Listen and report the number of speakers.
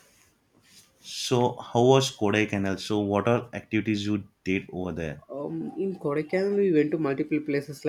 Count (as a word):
two